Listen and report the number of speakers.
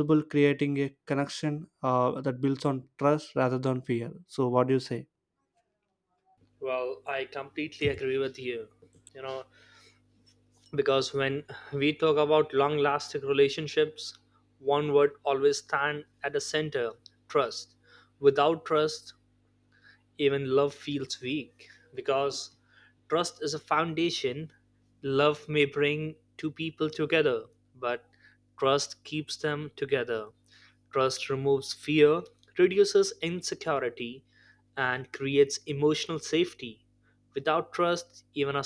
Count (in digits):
2